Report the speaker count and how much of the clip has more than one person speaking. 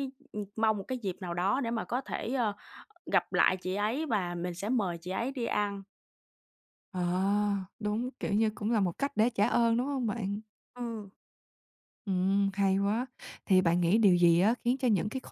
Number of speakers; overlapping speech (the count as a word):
two, no overlap